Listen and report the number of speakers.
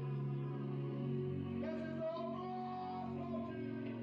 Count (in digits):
0